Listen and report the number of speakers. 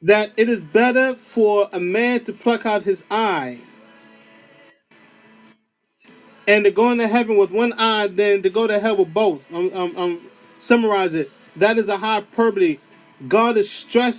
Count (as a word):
one